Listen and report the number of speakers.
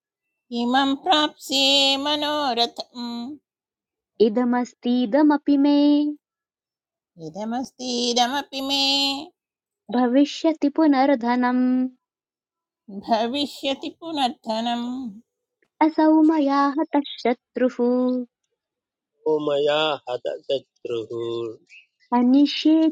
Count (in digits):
3